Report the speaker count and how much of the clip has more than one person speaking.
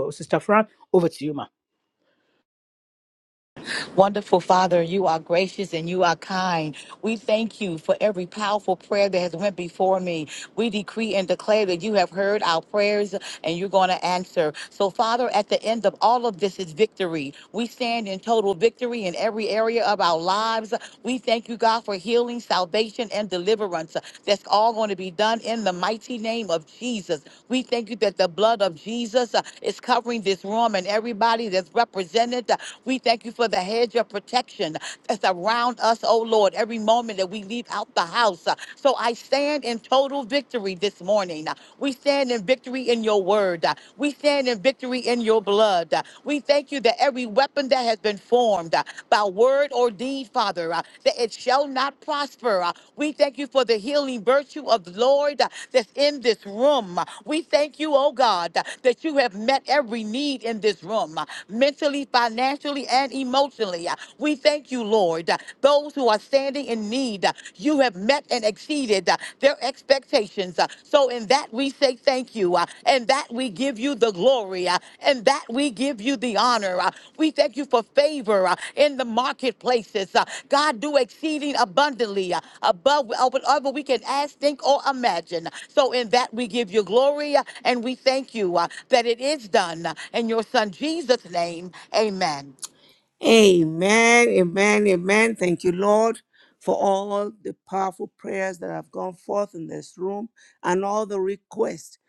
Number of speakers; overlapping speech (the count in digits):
3, no overlap